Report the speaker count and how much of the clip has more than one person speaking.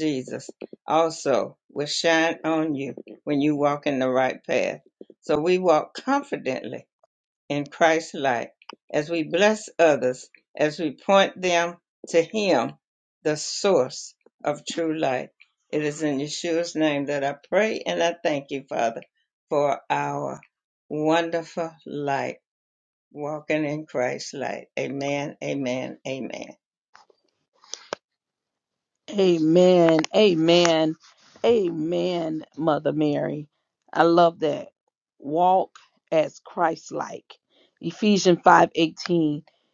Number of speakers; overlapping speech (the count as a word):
two, no overlap